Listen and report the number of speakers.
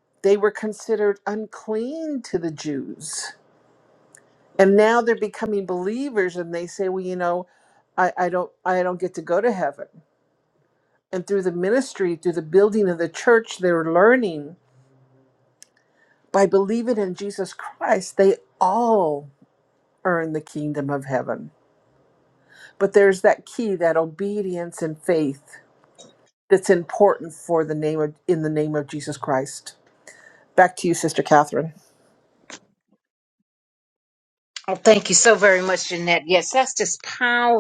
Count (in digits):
2